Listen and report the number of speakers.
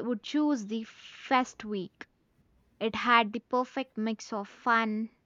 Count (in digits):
1